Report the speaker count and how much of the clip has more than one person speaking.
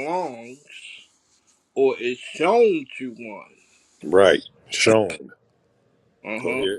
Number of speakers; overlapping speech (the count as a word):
two, about 4%